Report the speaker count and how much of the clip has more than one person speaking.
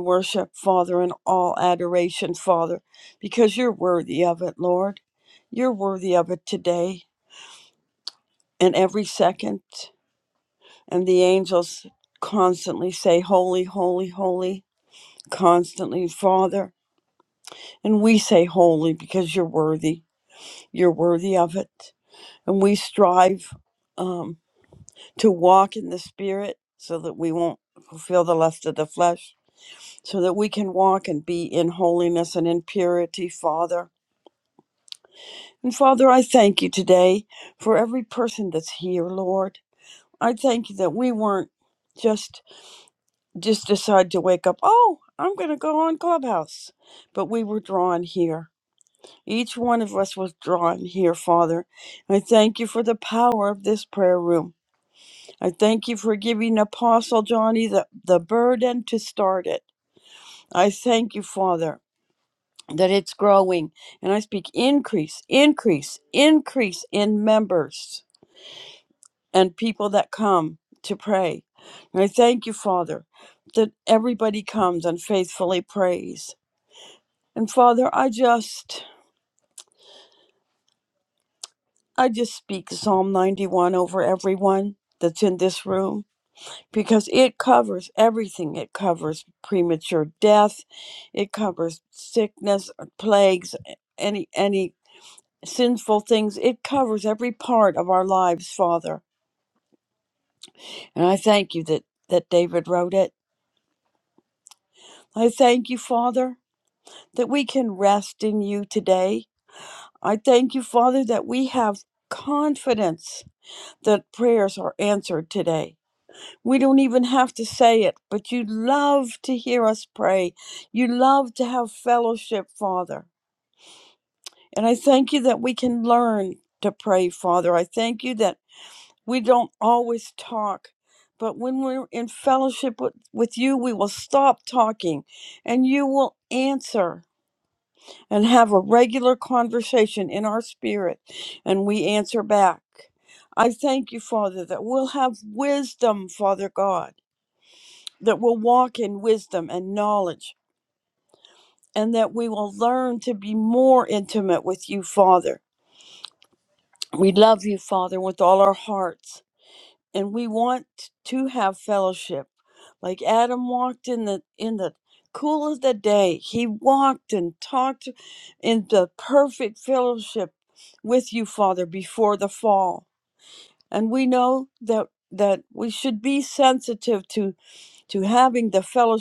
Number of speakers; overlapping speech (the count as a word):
one, no overlap